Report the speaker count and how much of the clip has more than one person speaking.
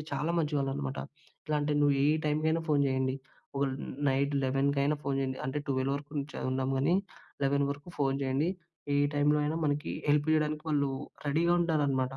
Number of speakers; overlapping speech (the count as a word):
one, no overlap